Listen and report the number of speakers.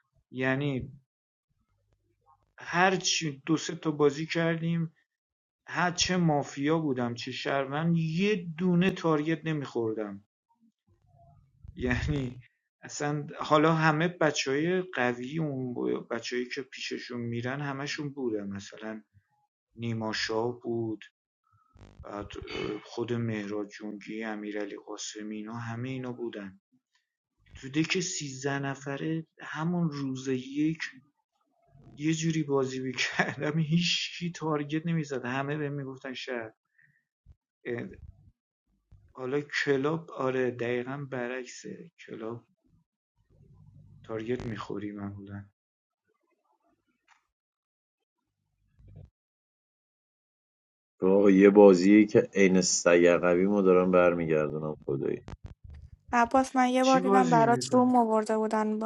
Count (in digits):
3